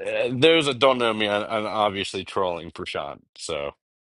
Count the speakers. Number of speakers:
one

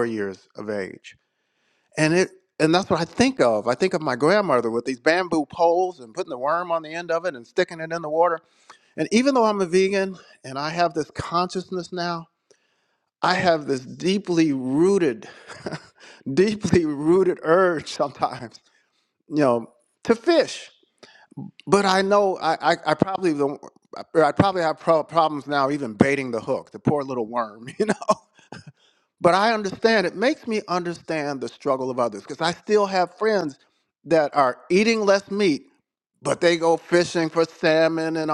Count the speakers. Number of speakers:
one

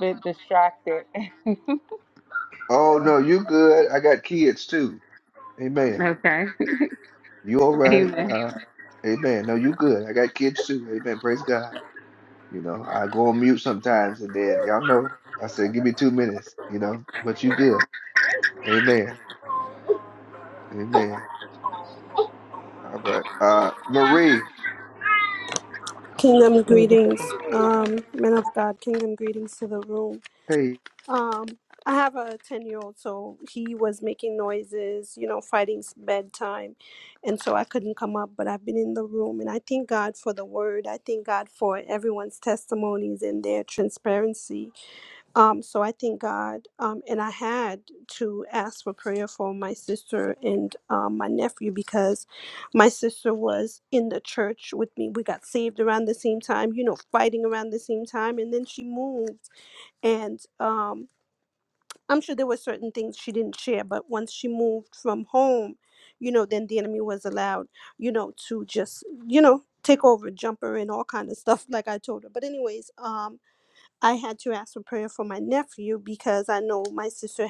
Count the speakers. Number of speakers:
three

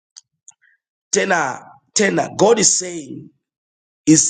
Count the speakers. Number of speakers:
one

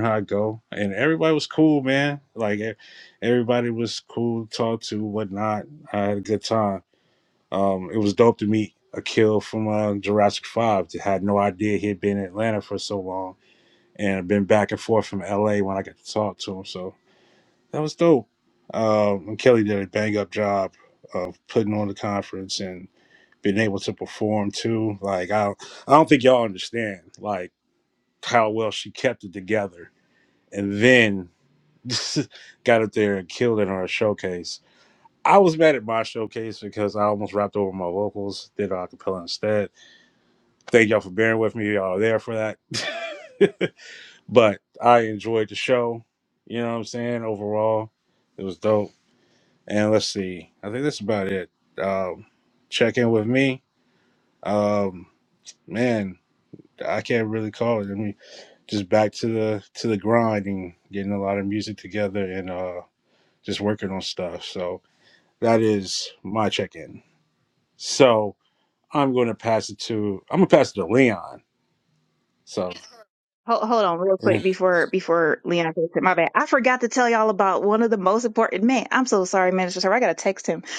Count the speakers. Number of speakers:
two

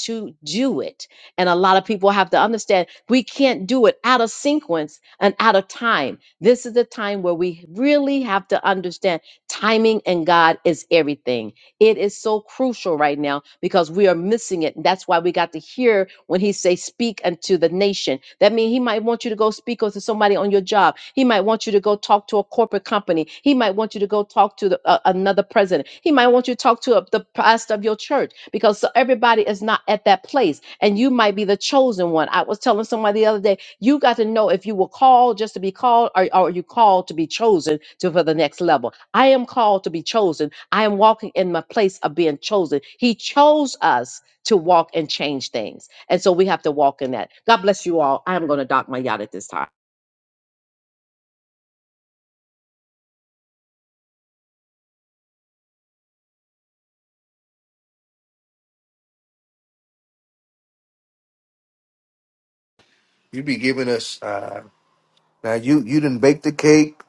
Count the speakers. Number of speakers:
two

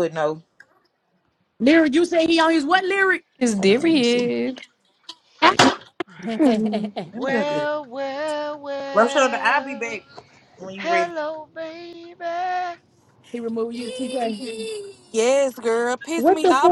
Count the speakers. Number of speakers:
five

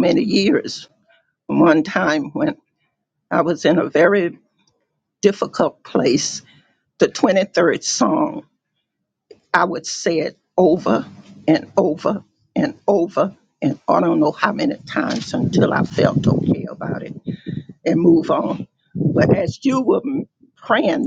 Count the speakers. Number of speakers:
one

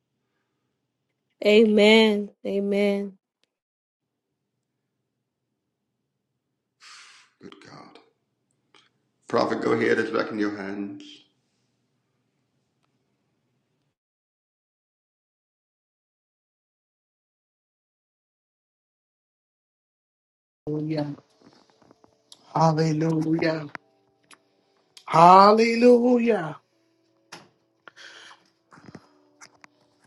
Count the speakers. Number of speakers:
three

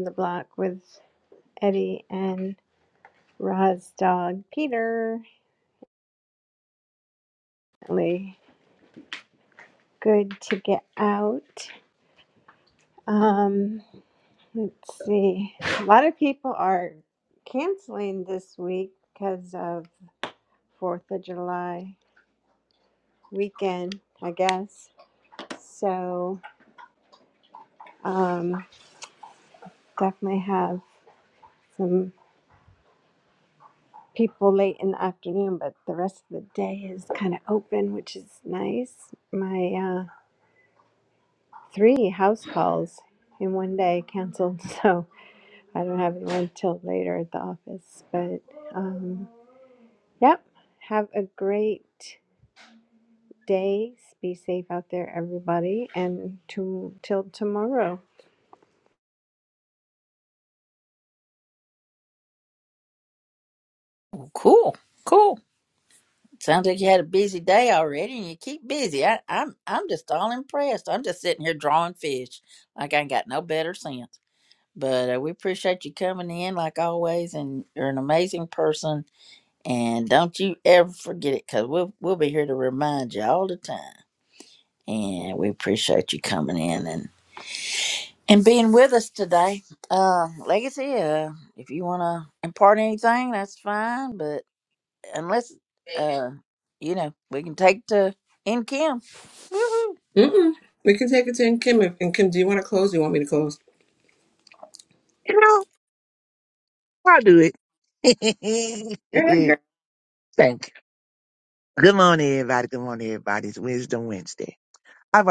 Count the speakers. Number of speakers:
four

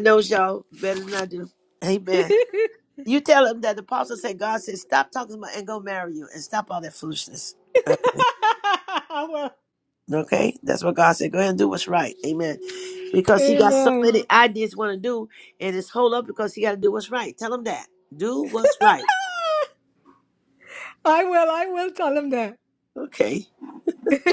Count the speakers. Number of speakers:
two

